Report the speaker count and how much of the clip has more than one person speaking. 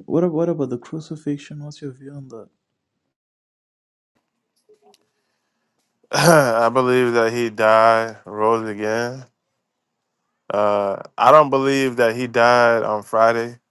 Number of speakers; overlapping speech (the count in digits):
2, no overlap